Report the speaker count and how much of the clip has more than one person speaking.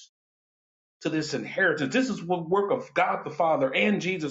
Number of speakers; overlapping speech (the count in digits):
1, no overlap